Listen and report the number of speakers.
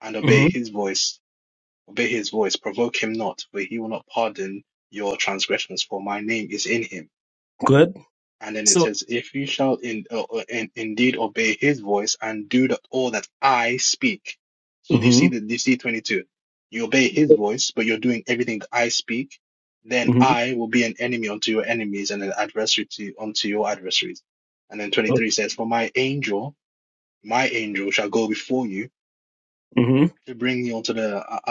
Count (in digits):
2